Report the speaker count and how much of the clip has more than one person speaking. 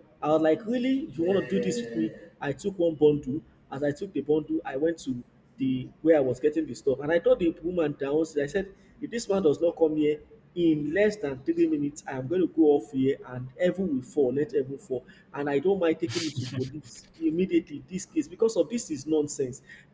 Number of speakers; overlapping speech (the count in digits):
1, no overlap